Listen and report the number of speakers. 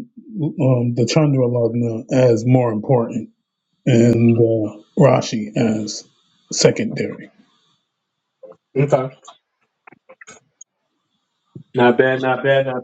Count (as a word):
two